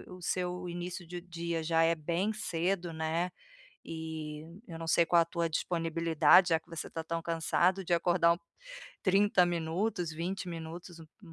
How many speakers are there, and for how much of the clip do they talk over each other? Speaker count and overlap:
one, no overlap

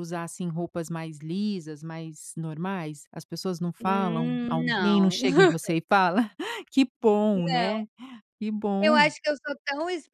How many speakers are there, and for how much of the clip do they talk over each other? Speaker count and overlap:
two, about 21%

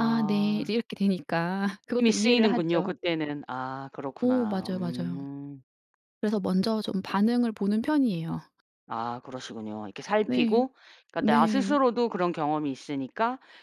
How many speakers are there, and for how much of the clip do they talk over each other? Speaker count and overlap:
two, about 26%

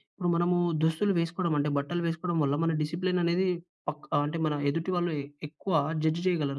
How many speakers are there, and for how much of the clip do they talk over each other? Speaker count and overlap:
one, no overlap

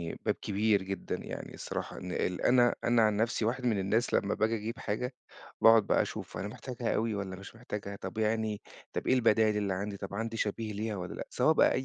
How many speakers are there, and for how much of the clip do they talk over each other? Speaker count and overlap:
one, no overlap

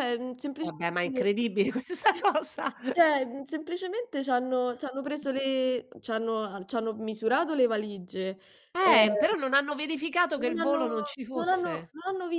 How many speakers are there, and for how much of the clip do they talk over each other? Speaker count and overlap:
two, about 14%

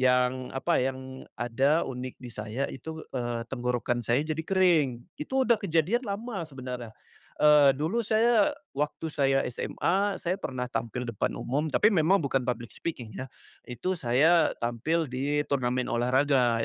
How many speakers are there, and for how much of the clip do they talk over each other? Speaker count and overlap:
one, no overlap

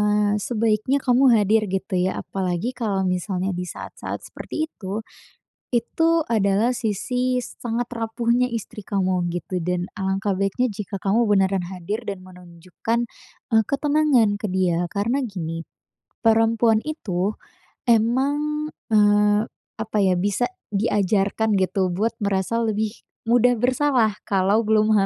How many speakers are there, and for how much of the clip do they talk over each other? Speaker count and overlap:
one, no overlap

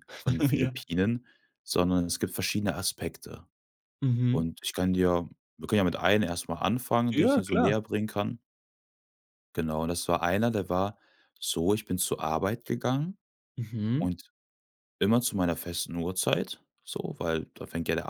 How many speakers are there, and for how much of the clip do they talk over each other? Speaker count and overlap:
two, about 6%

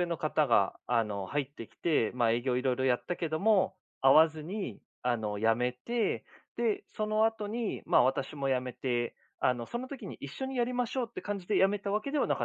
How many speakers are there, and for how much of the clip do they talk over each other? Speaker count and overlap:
one, no overlap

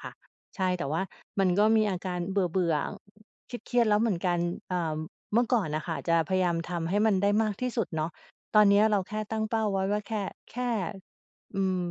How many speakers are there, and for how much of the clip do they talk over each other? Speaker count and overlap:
one, no overlap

